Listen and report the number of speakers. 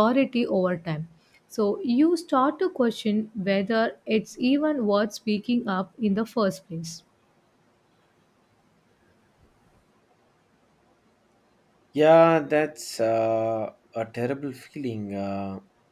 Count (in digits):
2